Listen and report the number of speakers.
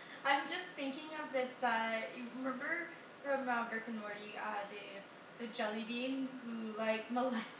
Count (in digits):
1